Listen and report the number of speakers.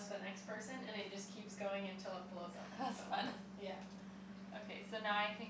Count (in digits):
2